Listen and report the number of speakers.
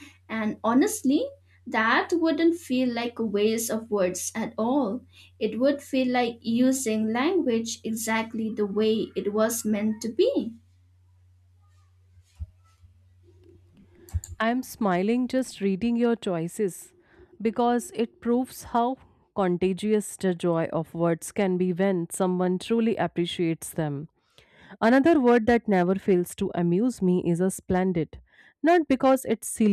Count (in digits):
2